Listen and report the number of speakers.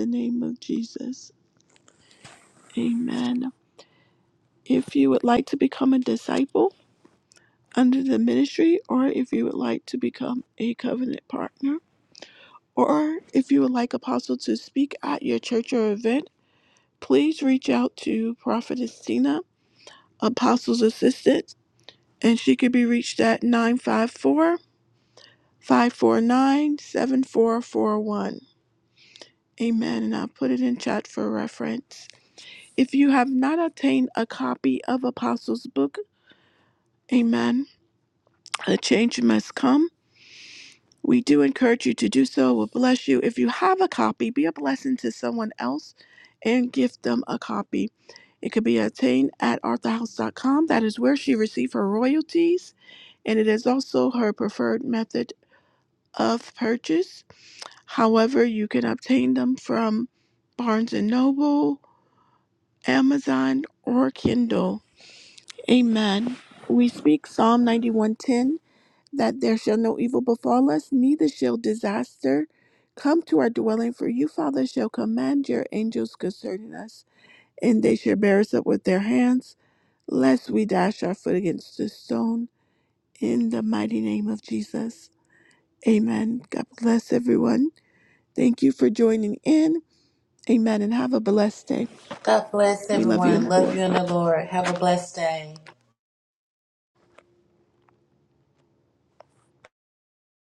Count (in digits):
2